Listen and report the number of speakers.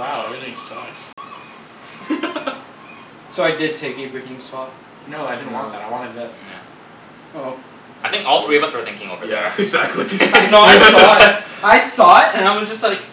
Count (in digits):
4